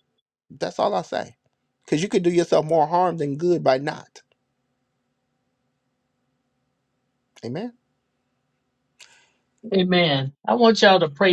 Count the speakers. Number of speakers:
two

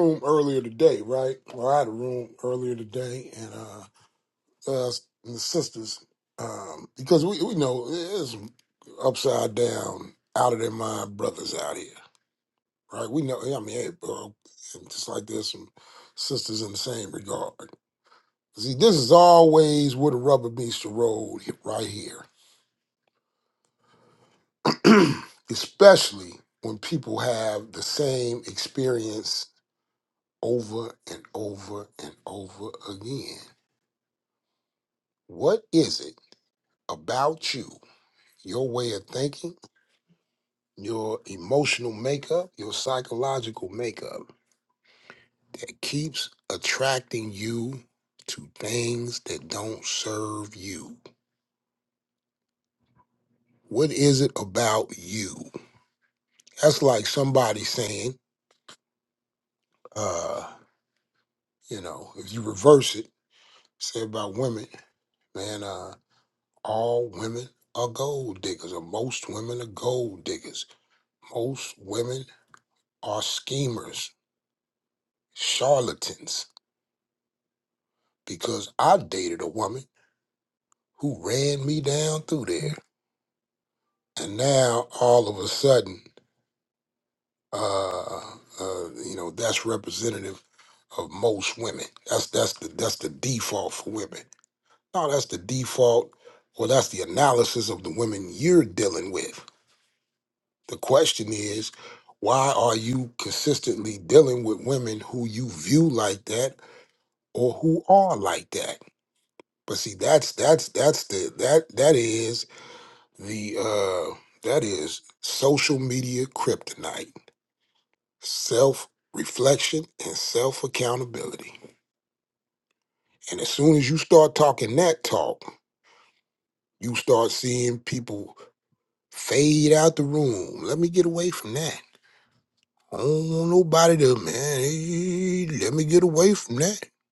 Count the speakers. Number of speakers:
one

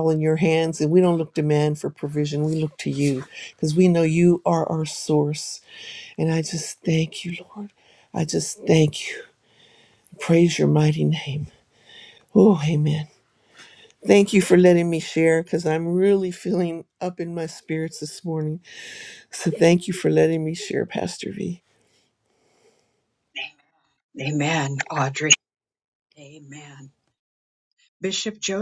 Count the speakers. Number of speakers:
two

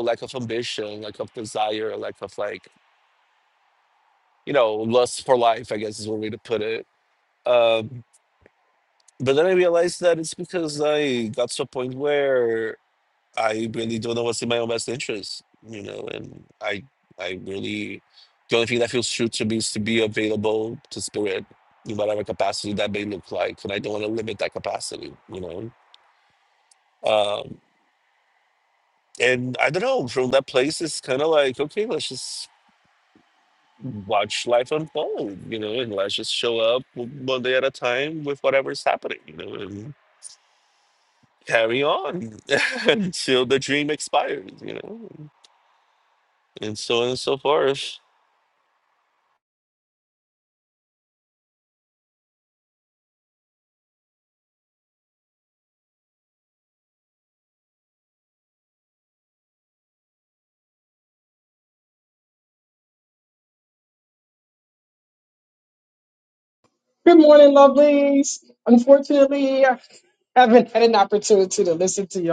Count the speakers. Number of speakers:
two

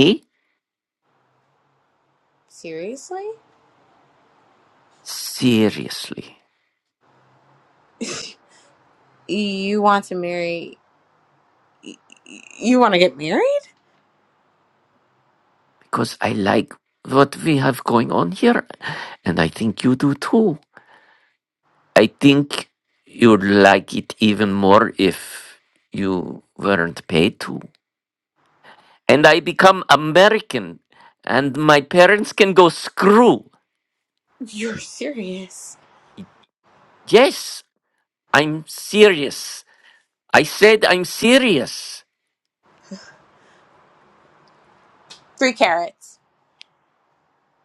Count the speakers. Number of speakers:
two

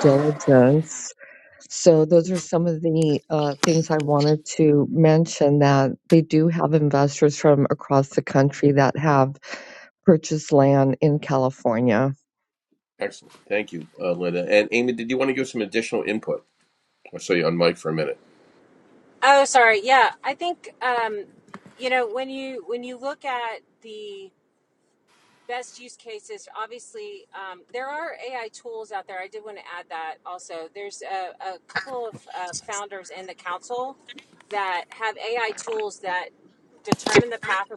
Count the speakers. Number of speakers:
three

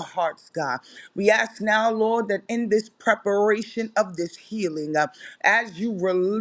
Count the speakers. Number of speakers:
one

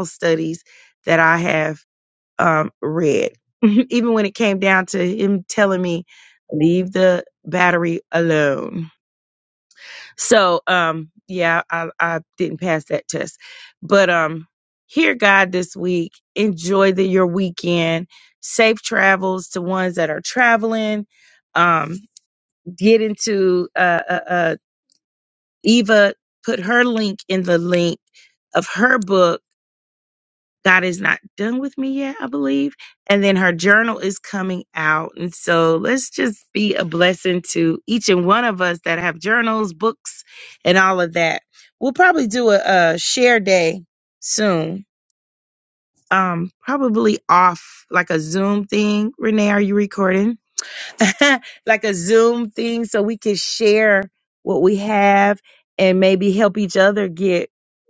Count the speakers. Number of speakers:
one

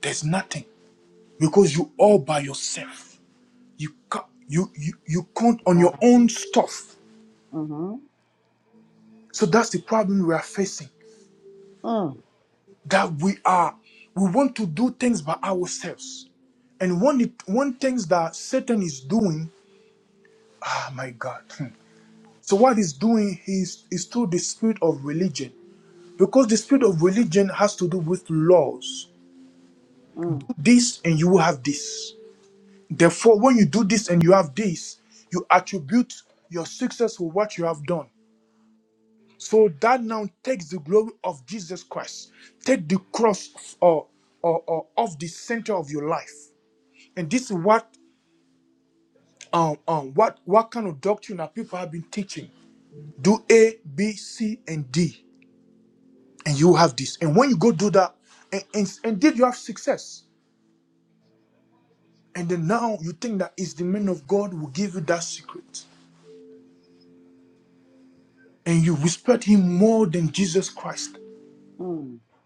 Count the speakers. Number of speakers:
two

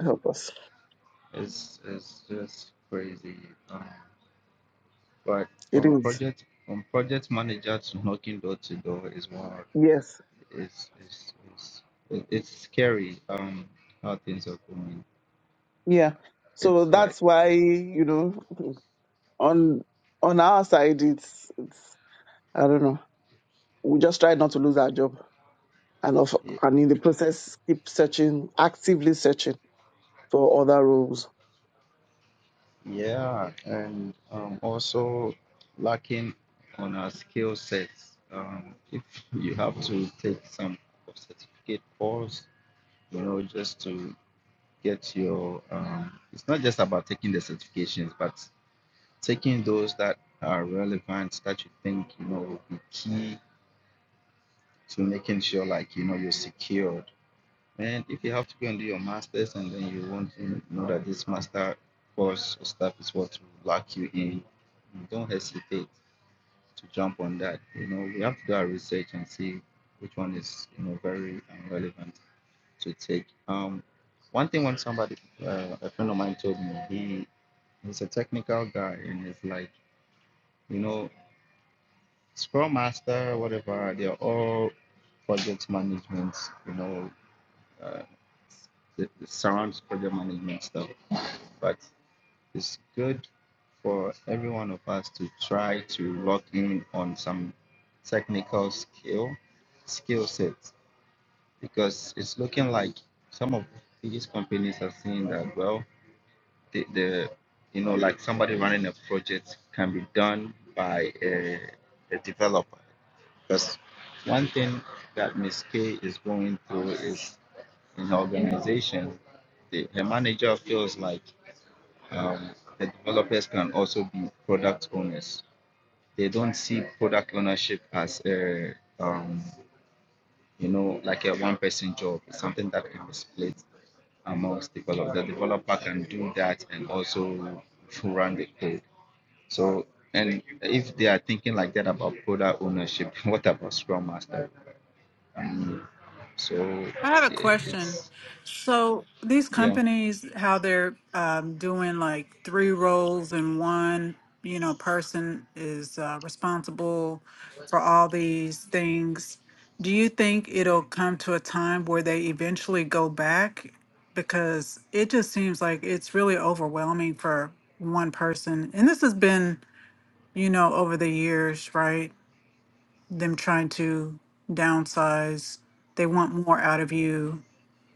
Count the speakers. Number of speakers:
three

